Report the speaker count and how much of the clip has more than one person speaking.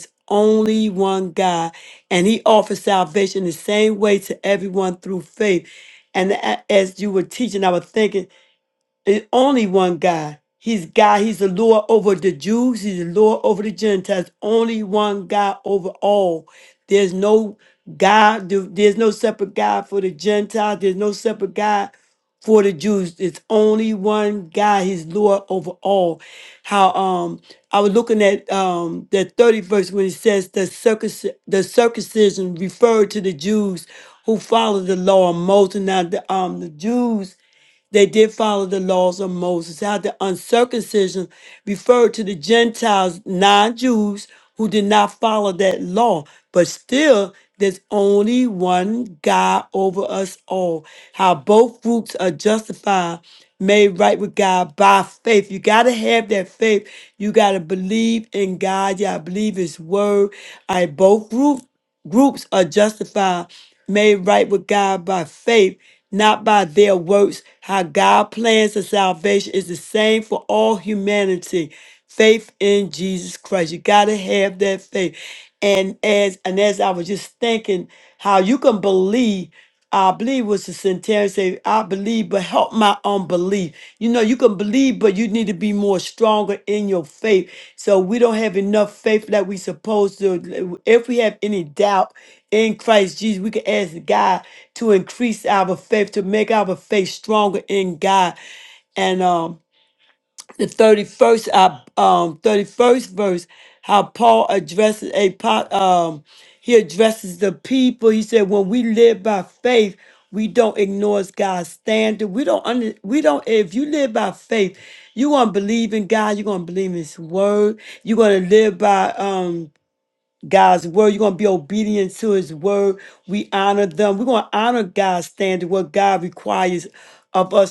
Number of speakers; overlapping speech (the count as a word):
one, no overlap